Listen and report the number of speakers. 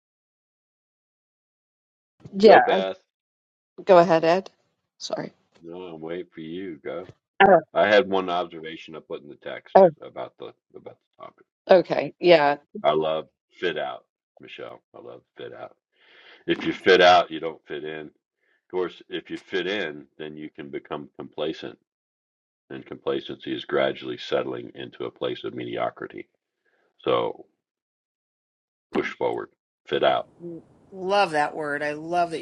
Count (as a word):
three